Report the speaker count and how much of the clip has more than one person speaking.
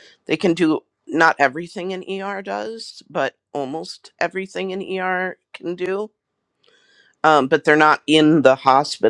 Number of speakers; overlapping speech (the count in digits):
1, no overlap